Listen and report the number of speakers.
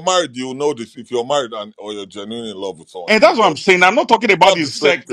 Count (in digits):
2